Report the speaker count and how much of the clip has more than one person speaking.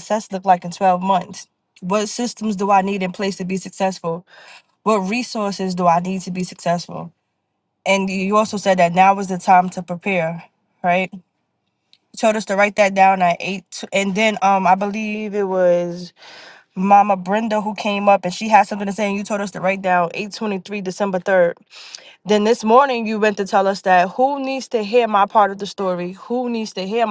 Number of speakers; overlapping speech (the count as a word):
one, no overlap